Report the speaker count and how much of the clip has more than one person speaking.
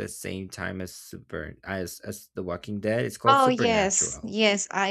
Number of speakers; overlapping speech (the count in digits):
2, about 20%